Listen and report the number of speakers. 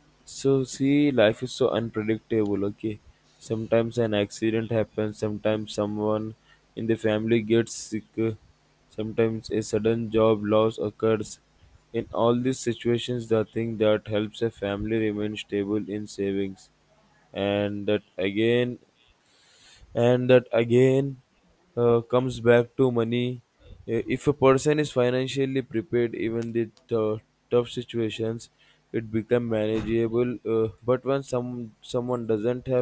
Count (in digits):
1